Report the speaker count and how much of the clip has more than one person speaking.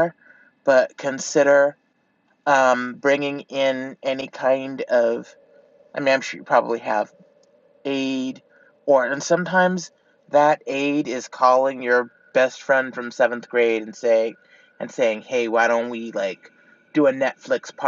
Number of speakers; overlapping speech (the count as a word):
one, no overlap